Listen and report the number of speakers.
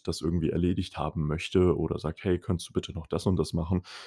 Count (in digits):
1